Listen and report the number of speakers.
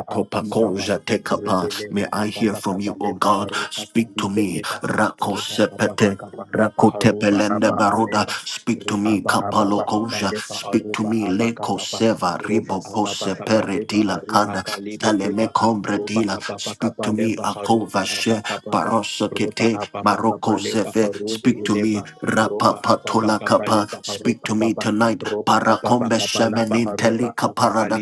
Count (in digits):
2